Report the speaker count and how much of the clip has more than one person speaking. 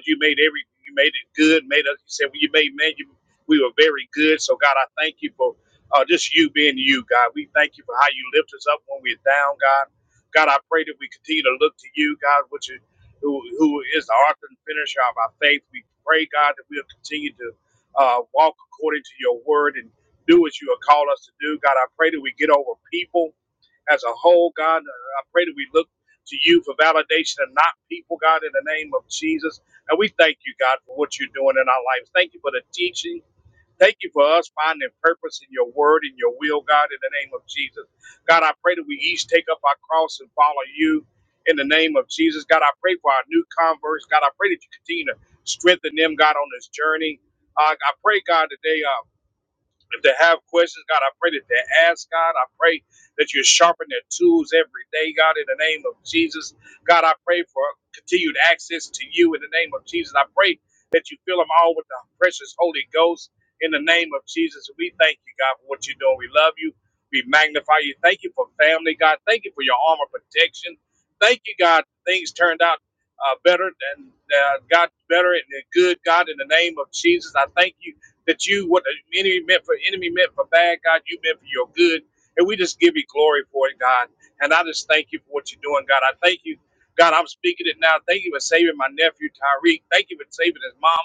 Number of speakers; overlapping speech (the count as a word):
one, no overlap